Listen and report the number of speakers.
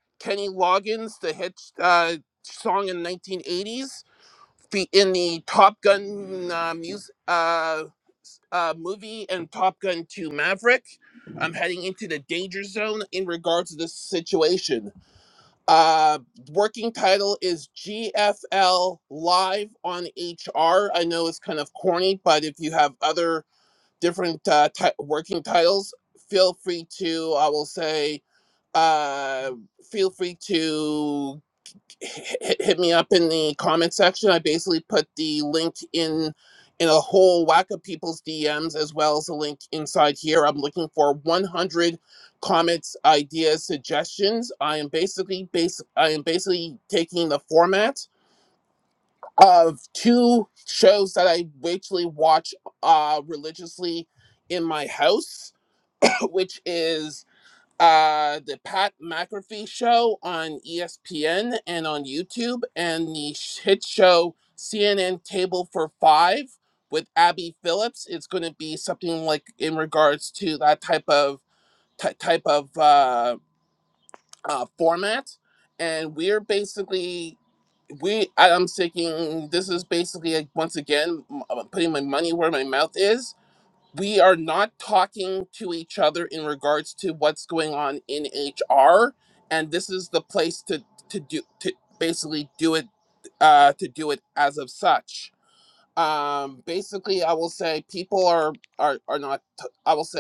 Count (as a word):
one